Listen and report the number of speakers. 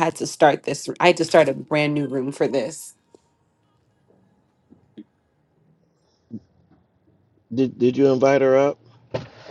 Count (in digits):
2